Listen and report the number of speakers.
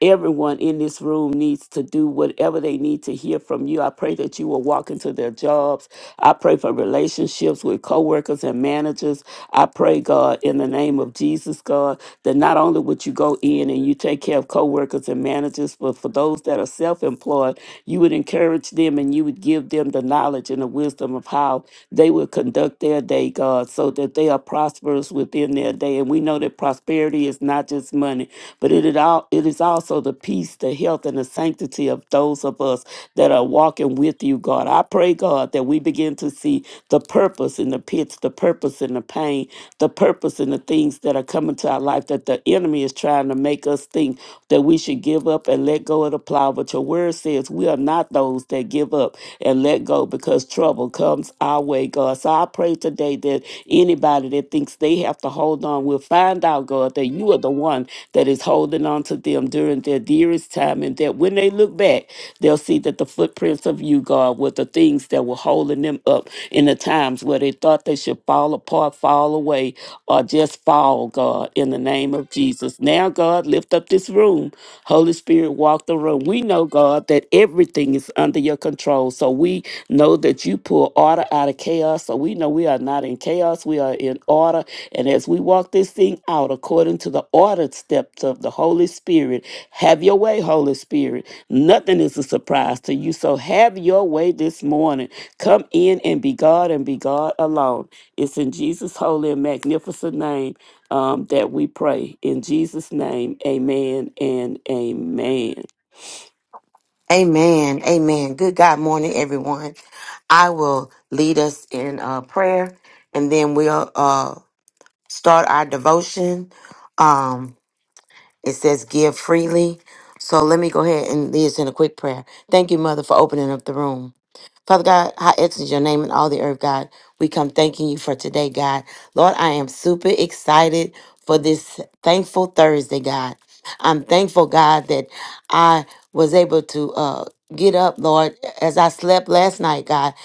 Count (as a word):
two